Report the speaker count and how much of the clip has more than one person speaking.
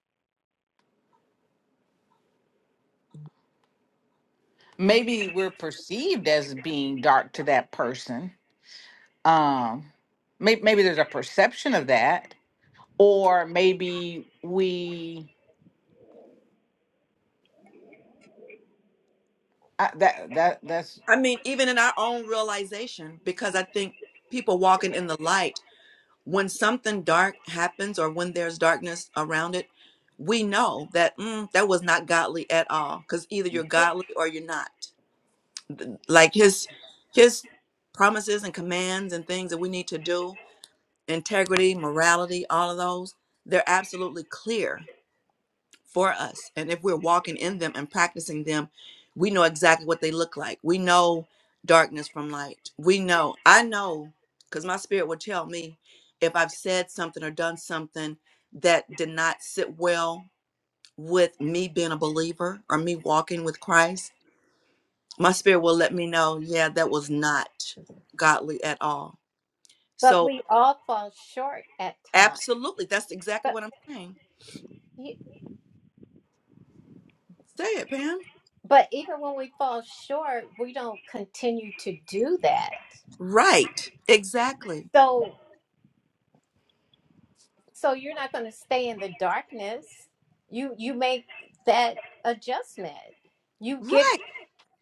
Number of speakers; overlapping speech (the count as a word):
three, about 1%